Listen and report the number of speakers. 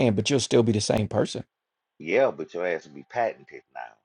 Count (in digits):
2